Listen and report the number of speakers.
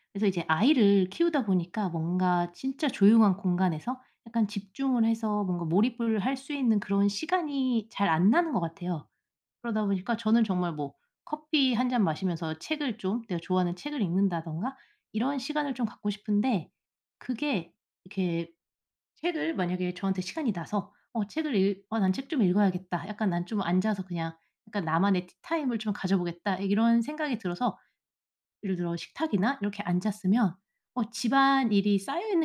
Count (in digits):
1